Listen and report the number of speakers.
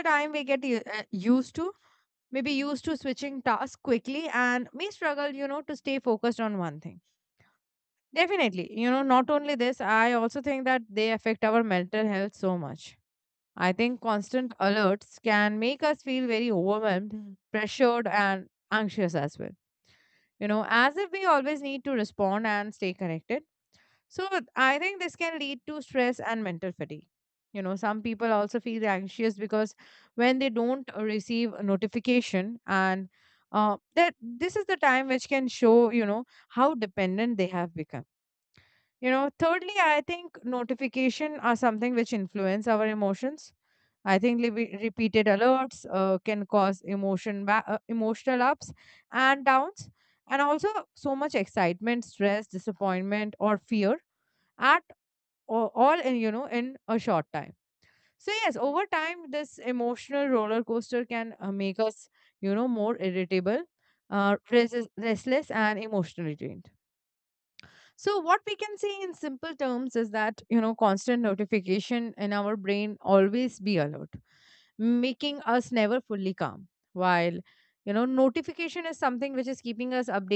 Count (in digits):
1